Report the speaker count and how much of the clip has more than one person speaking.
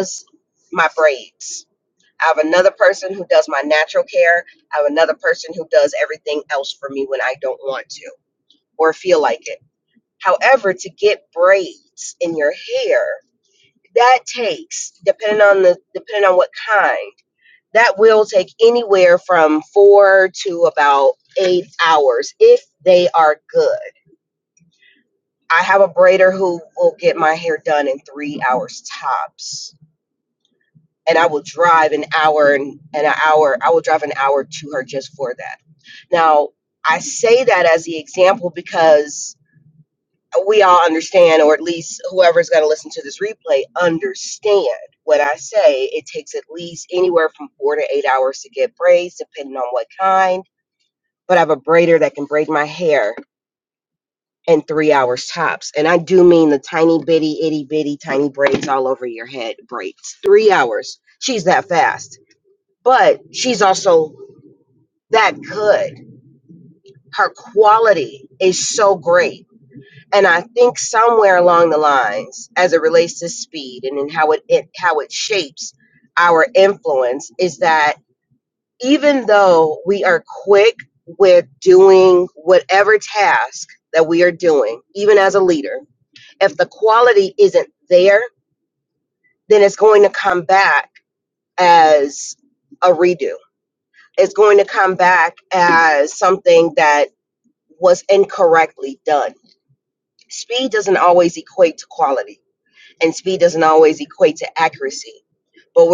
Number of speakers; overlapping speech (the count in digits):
1, no overlap